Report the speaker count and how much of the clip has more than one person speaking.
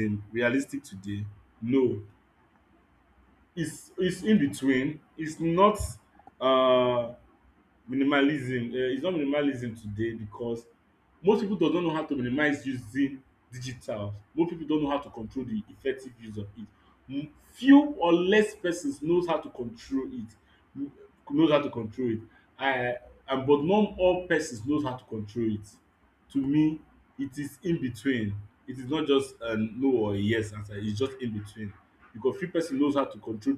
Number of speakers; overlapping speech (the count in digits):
1, no overlap